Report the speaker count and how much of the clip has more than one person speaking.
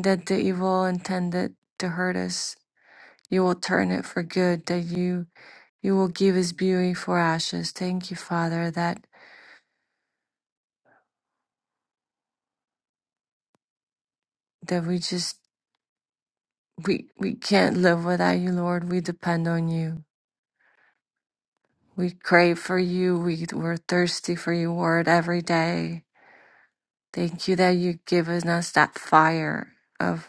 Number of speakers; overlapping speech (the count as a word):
one, no overlap